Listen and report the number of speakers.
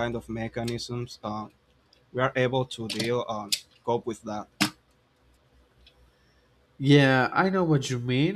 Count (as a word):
two